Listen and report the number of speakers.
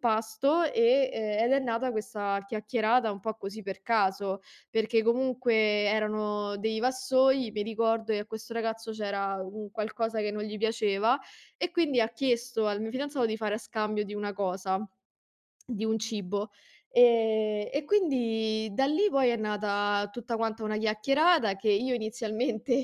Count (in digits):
1